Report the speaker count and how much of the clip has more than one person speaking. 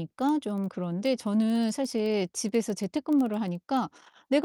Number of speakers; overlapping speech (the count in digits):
1, no overlap